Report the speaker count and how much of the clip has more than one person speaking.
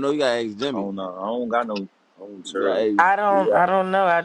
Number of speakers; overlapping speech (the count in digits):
3, about 22%